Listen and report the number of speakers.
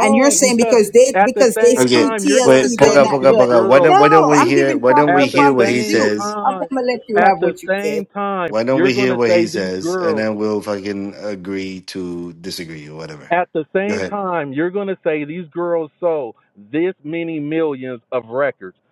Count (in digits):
3